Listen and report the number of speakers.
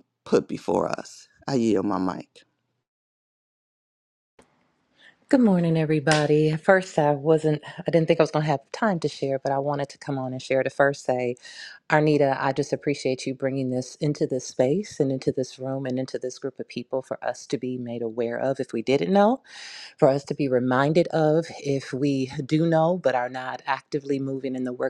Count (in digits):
2